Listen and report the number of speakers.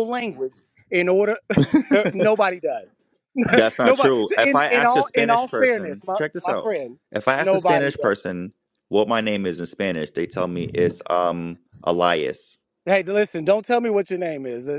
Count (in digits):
2